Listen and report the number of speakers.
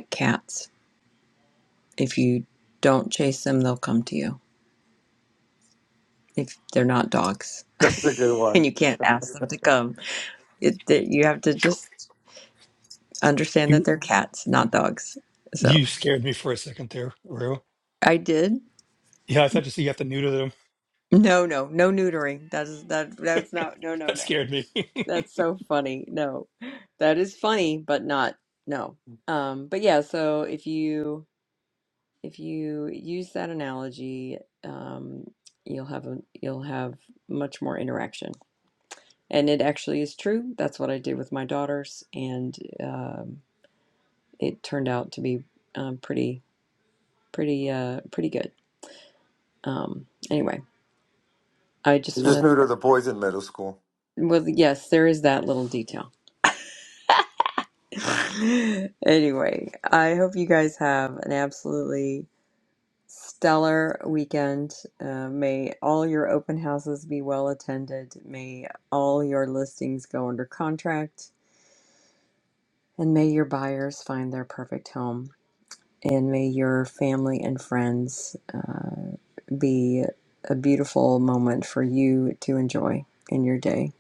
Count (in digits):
3